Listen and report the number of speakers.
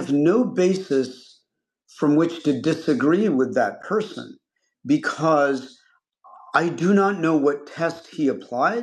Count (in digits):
1